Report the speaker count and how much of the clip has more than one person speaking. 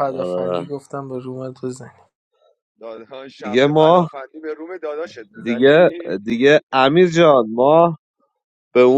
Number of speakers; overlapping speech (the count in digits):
3, about 18%